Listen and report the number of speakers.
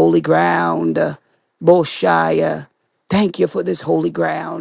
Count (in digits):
1